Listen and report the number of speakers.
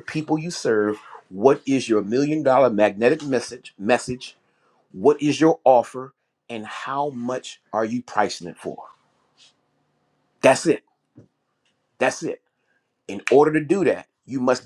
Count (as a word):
one